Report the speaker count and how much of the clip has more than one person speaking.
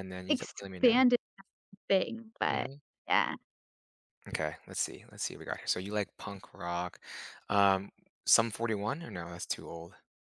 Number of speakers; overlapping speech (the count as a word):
two, about 6%